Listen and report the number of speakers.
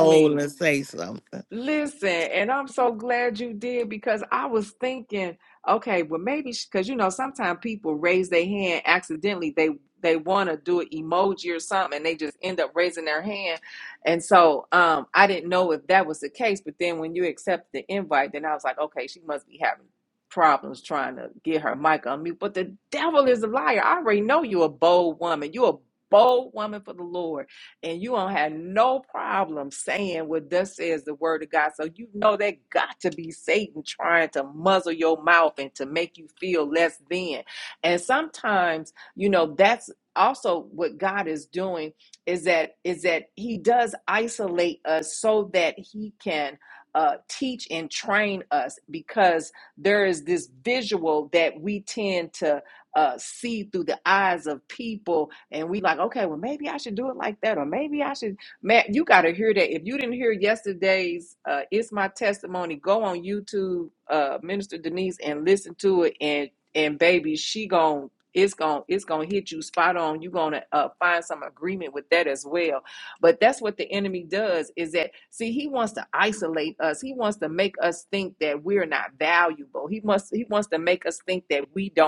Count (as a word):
two